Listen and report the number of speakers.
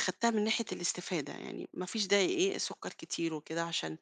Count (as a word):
one